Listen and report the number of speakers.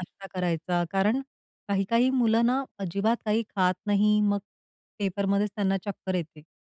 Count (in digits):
1